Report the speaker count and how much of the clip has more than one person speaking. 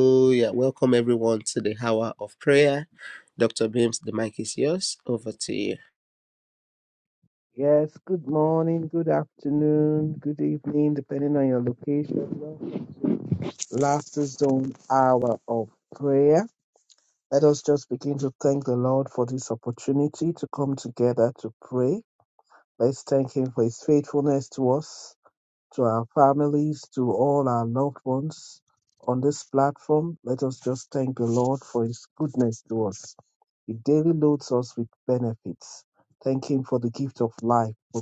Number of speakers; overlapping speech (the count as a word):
two, no overlap